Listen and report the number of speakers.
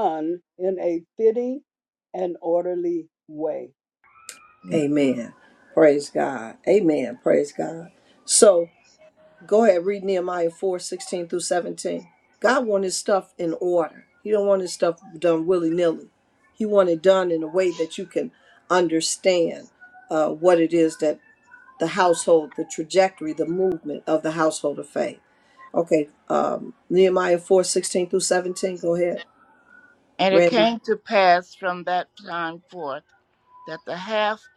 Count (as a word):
three